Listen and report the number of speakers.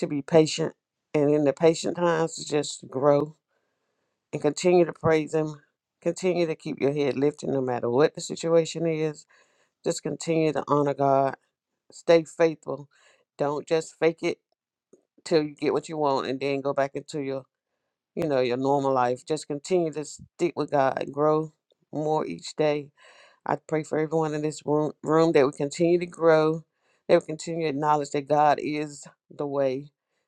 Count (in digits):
1